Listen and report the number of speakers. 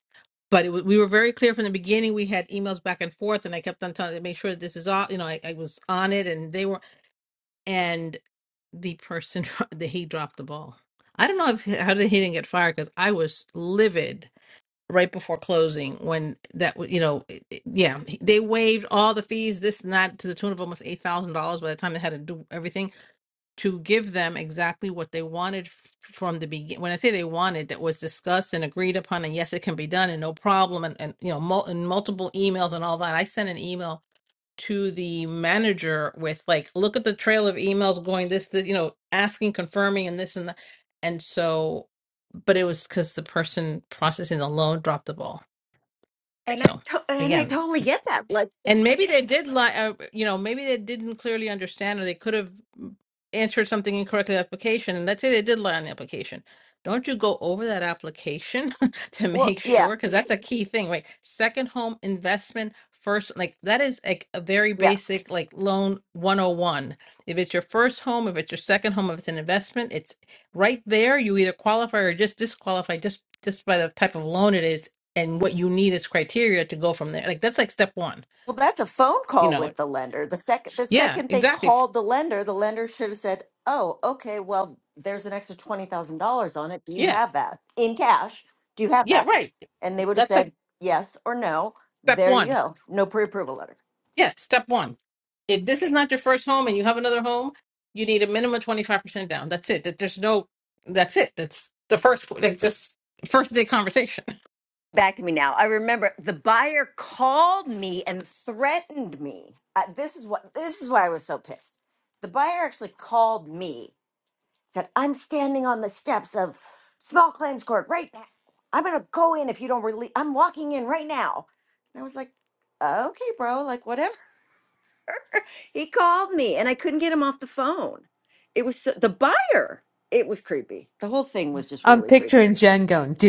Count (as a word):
three